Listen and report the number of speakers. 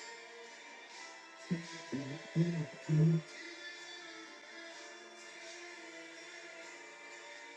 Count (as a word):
zero